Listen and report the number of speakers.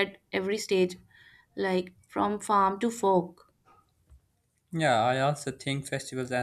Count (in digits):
2